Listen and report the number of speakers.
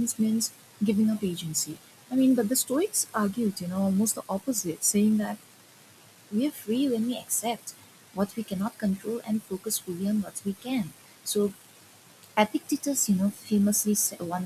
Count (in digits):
1